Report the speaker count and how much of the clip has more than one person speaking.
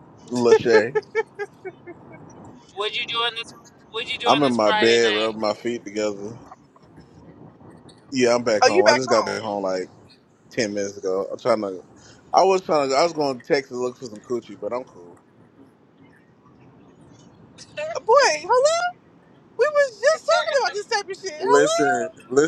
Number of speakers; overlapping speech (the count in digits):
3, about 11%